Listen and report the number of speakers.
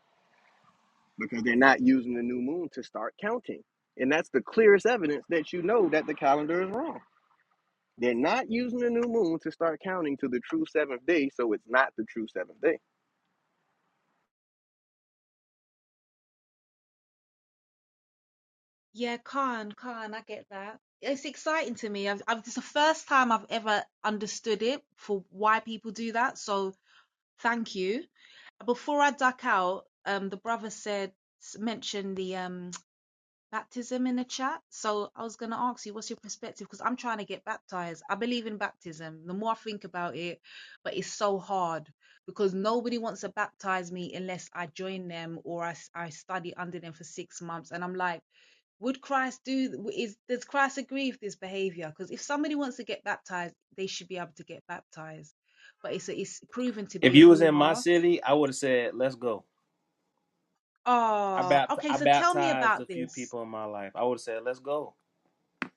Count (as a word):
three